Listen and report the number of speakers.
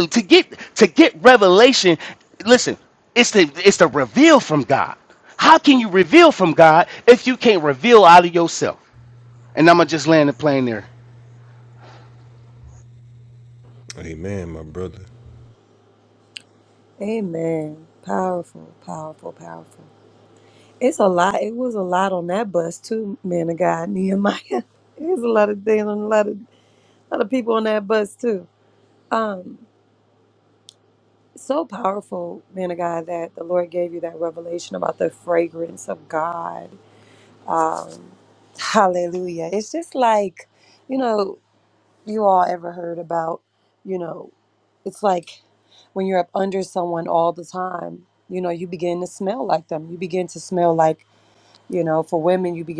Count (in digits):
3